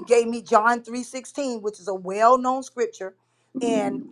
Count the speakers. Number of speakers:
1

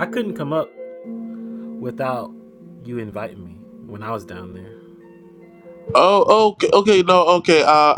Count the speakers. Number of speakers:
2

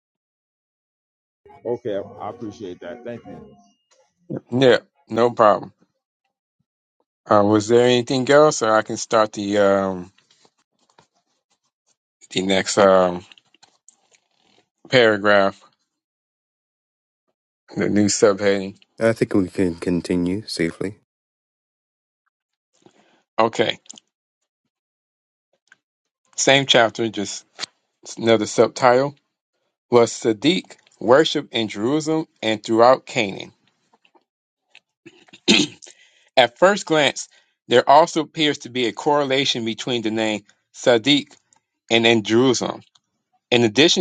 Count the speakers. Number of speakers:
3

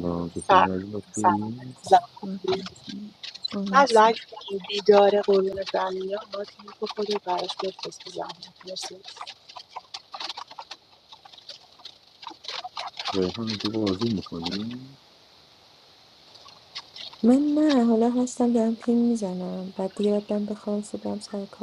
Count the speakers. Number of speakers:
4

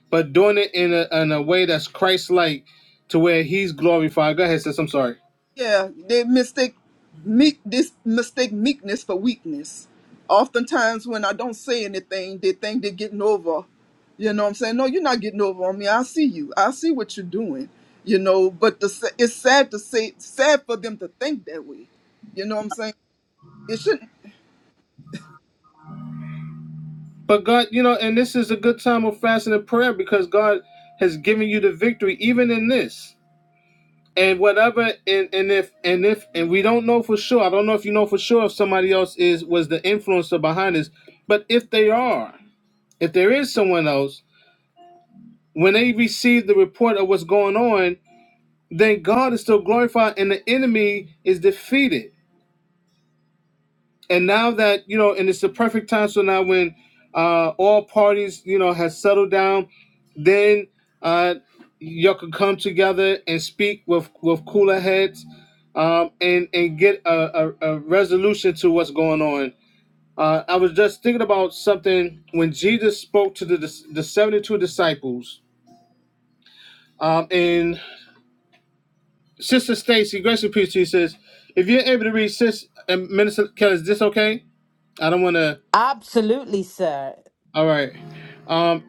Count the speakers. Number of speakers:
3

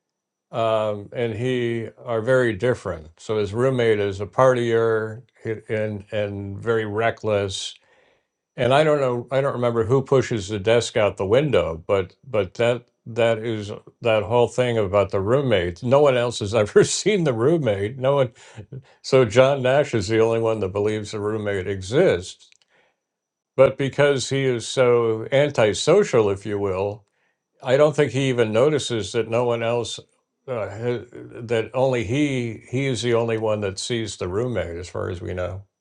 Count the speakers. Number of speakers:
1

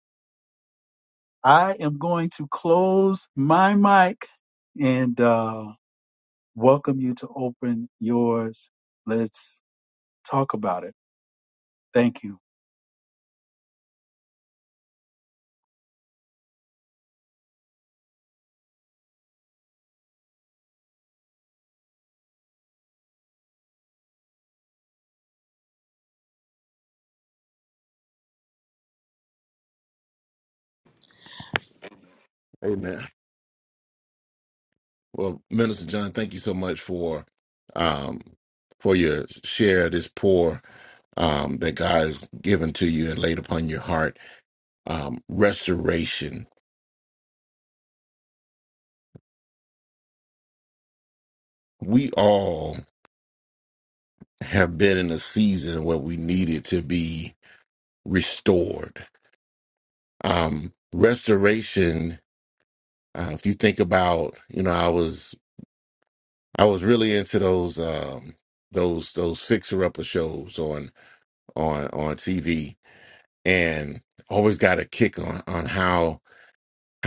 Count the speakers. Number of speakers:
2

